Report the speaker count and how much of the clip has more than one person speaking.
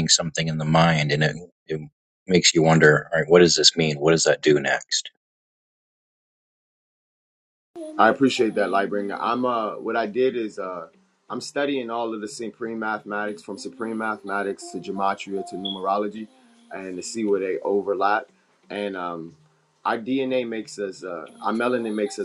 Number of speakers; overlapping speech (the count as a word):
two, no overlap